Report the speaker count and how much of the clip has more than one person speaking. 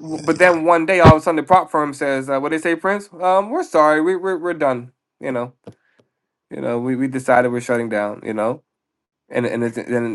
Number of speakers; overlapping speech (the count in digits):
1, no overlap